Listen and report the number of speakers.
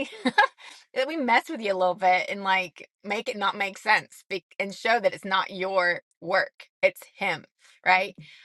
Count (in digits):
1